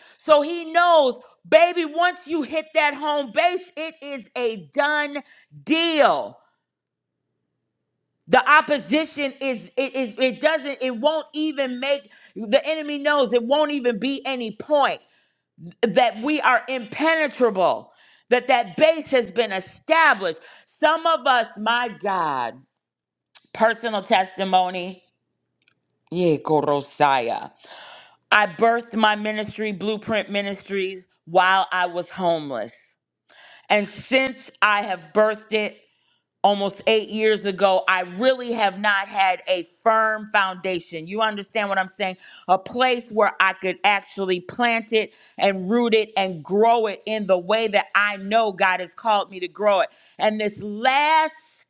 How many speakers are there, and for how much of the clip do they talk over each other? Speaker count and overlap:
one, no overlap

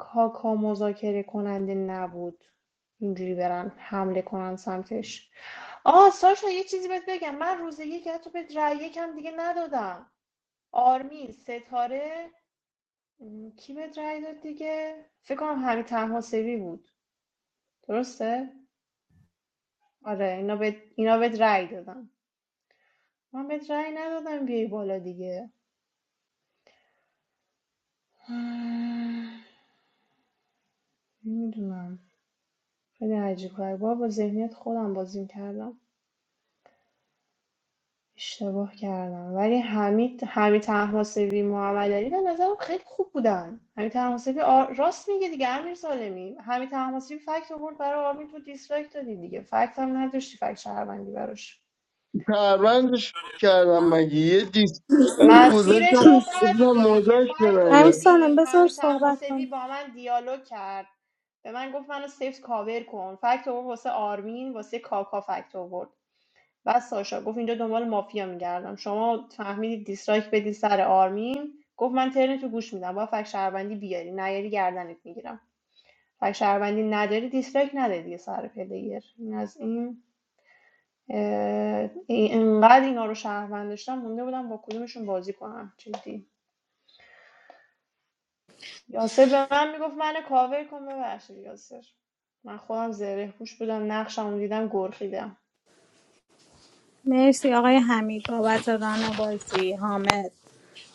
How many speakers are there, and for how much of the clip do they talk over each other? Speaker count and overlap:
three, about 4%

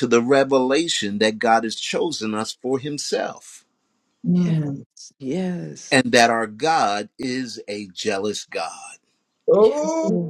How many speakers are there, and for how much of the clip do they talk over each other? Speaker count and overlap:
three, about 7%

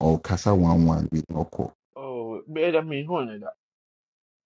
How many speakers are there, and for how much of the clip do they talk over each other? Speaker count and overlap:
two, no overlap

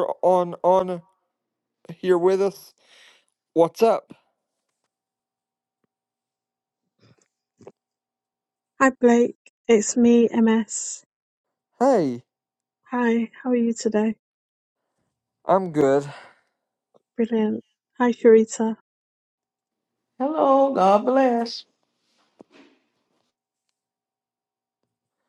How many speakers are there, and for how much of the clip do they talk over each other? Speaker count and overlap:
three, no overlap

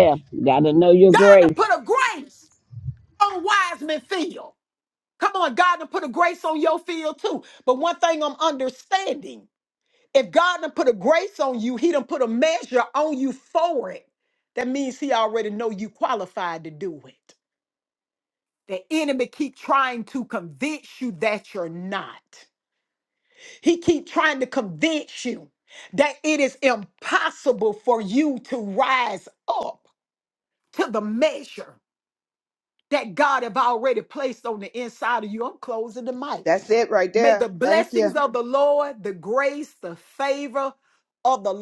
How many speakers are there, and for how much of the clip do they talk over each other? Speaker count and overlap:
three, about 4%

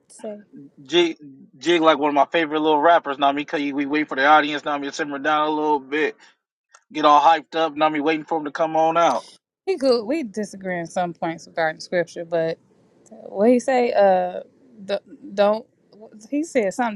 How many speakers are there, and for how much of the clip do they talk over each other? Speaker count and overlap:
two, no overlap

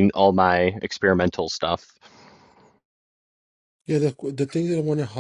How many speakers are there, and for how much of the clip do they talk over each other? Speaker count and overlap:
two, no overlap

